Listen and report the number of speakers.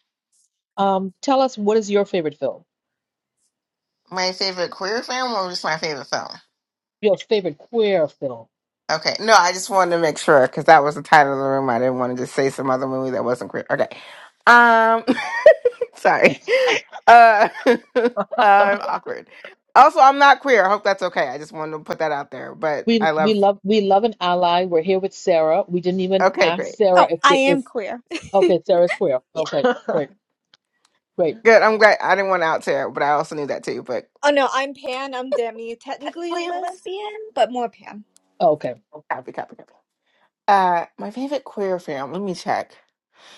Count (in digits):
3